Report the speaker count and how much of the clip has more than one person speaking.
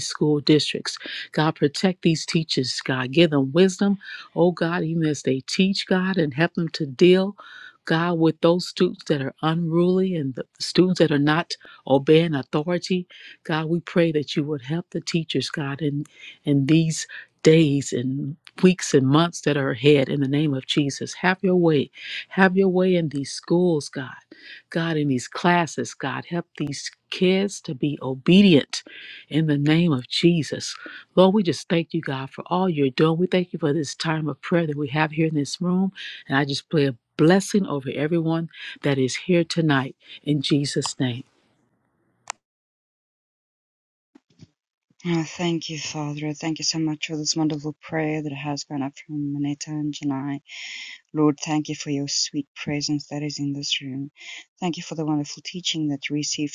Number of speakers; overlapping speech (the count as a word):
two, no overlap